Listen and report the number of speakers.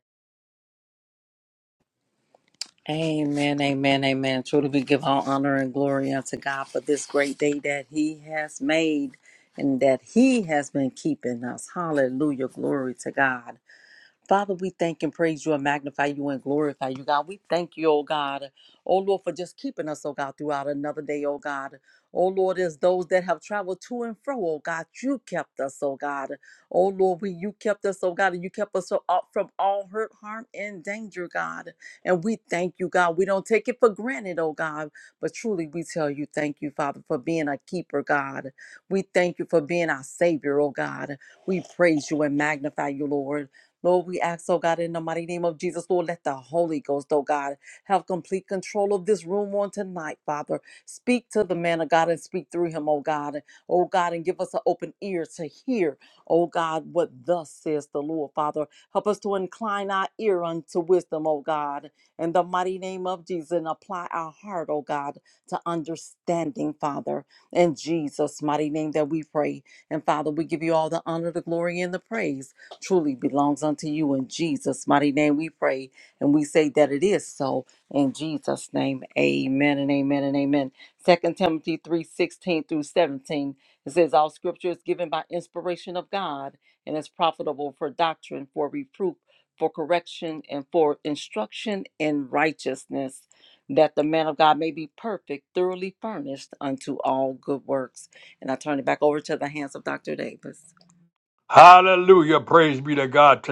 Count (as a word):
two